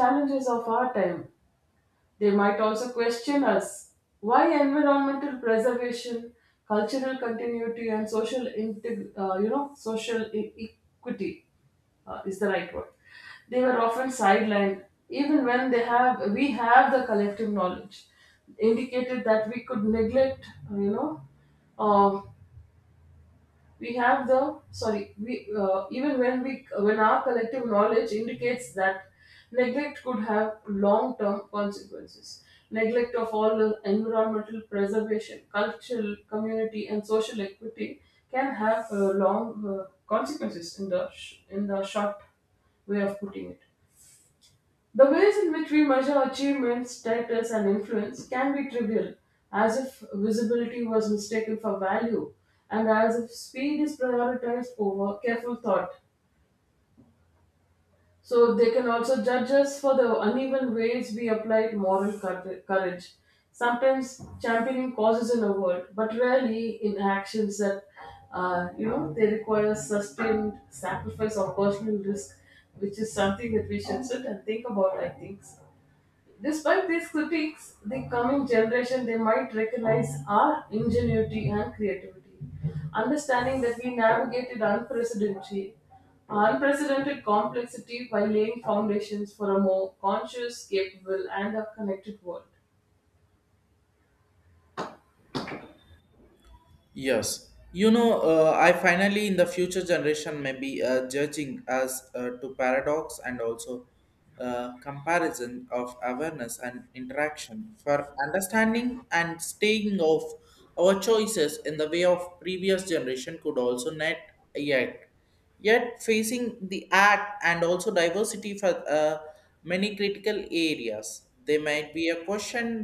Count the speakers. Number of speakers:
2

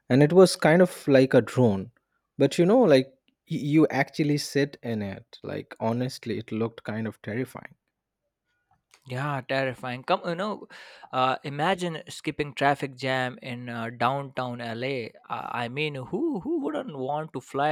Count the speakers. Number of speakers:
2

